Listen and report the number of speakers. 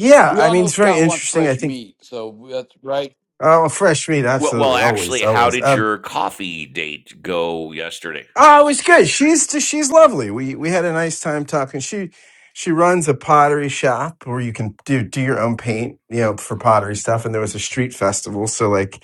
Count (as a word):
three